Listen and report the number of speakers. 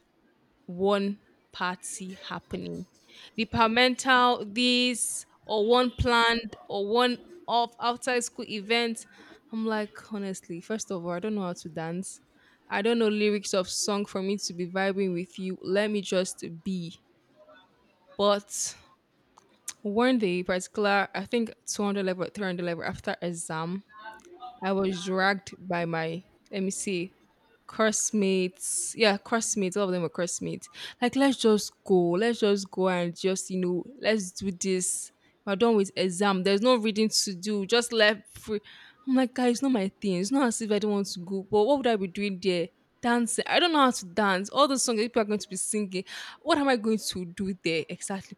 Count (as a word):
one